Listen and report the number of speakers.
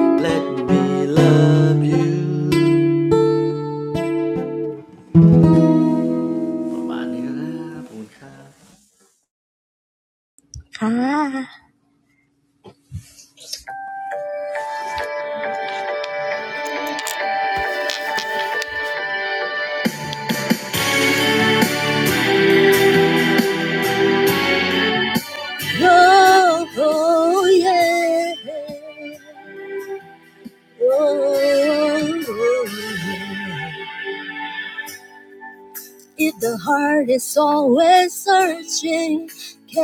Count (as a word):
two